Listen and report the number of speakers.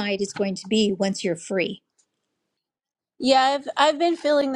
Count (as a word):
two